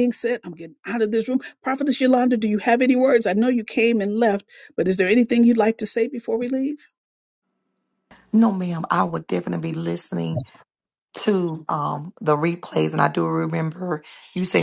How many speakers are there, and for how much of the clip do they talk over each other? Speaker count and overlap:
two, no overlap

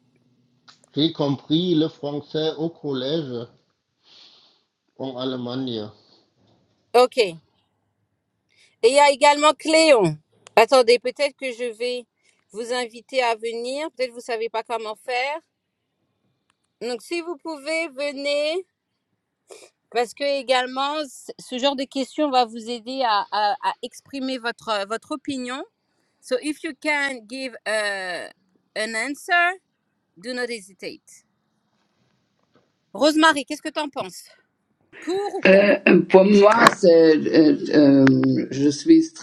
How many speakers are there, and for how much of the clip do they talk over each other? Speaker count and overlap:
three, about 1%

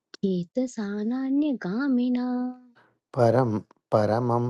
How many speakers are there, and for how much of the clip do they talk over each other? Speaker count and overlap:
two, no overlap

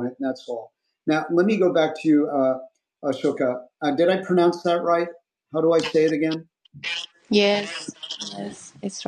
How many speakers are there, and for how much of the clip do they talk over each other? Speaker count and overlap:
two, no overlap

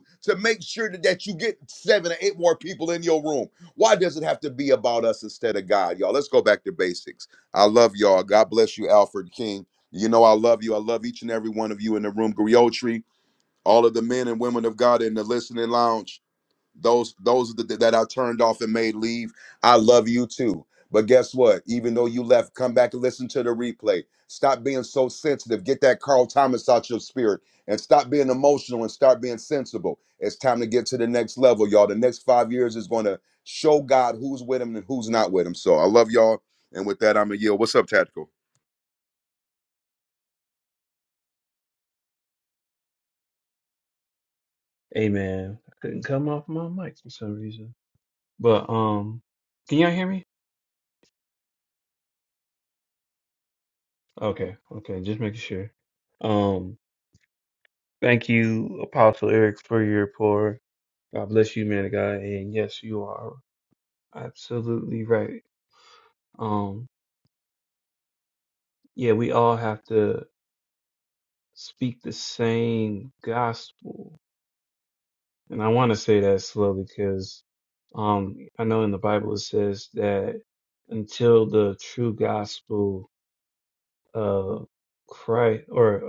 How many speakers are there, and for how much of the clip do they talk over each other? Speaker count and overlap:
two, no overlap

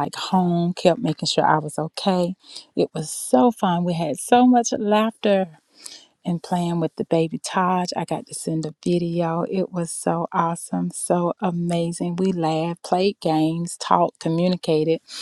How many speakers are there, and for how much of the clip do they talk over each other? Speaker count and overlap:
one, no overlap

